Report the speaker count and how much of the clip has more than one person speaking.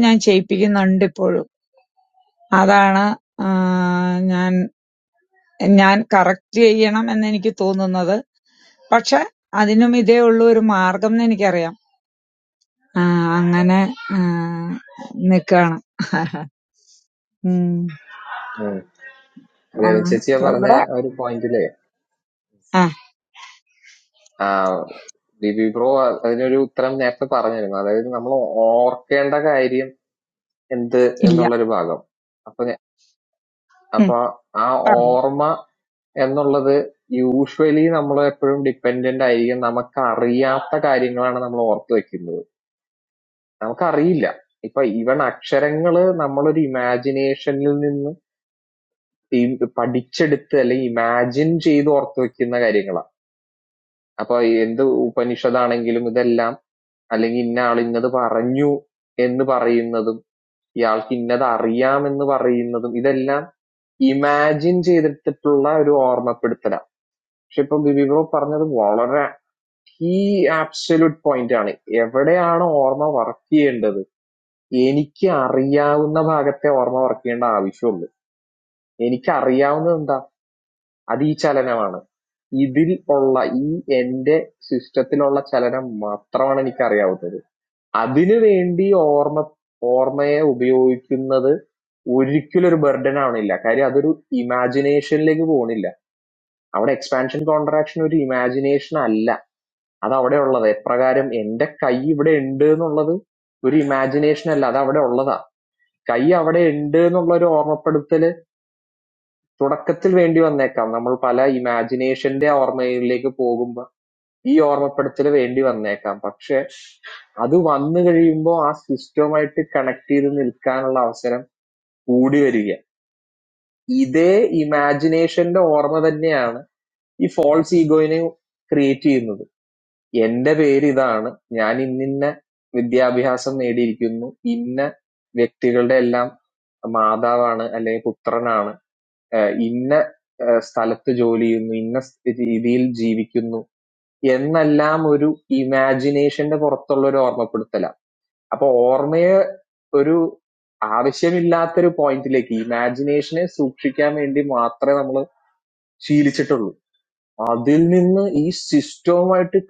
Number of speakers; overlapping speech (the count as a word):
two, about 1%